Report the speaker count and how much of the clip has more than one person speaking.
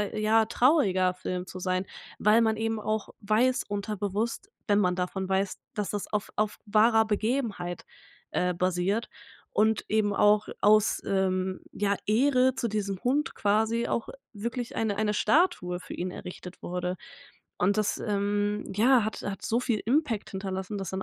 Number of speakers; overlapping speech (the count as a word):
one, no overlap